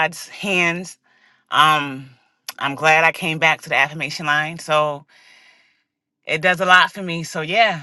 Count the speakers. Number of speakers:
1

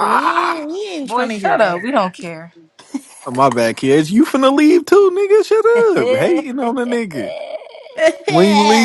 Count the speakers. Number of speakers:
3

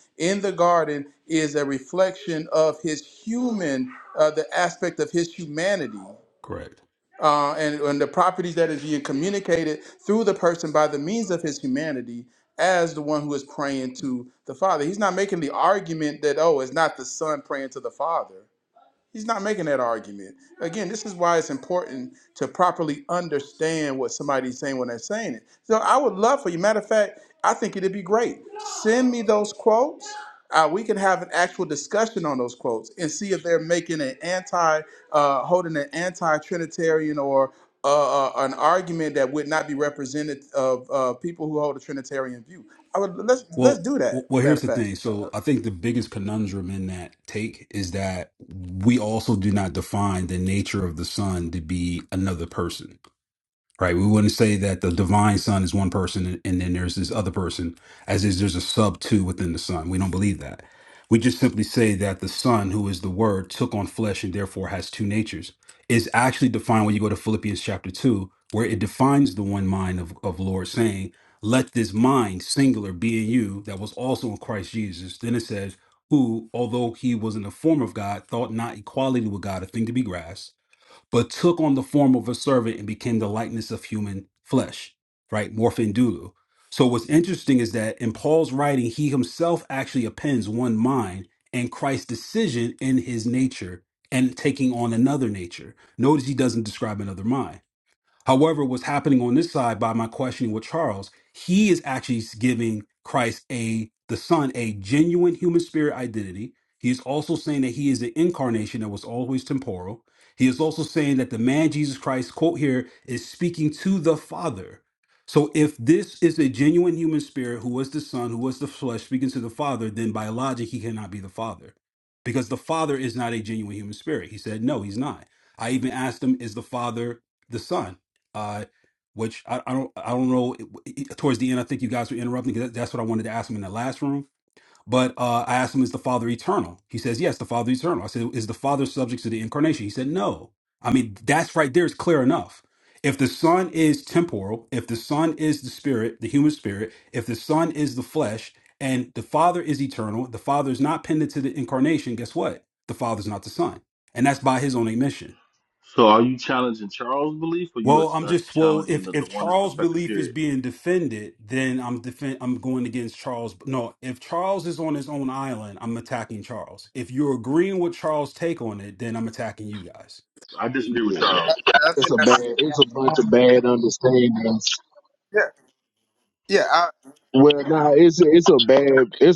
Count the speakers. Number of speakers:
4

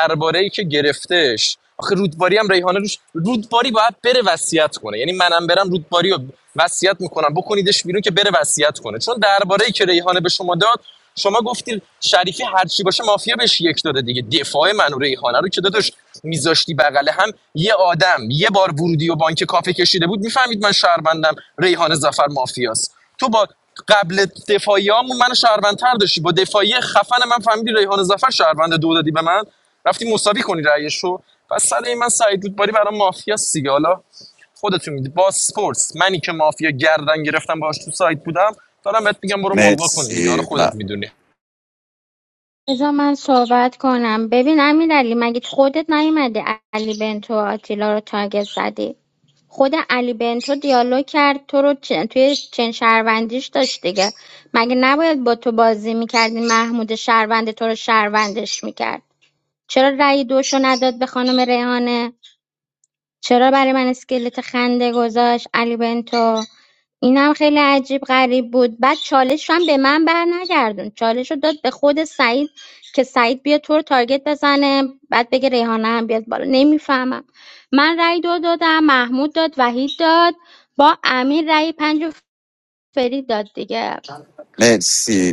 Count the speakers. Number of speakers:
3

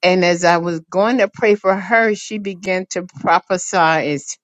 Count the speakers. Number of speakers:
1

